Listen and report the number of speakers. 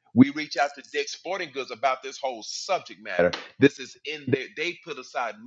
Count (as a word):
one